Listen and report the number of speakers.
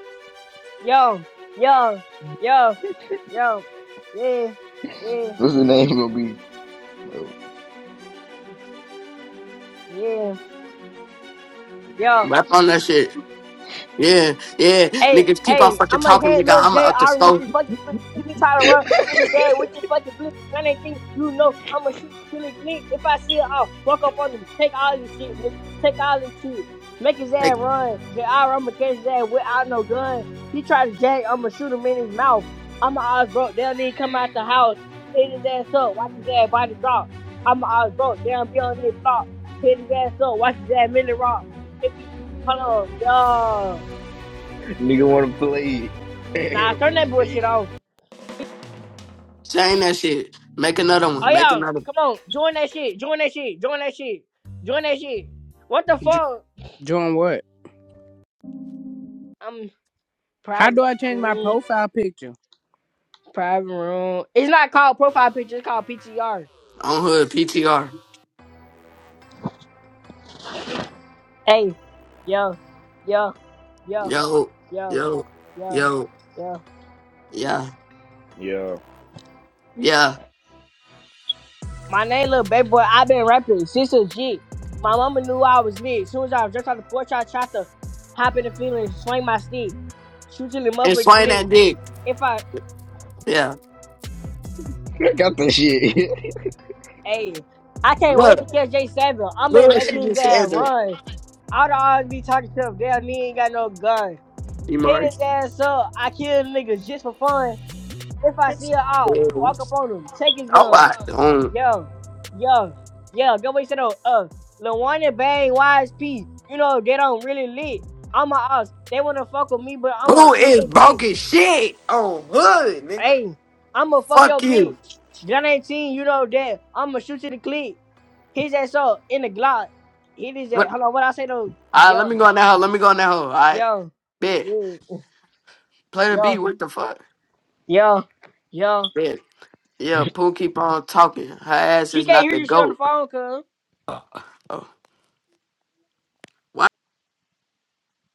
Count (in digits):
4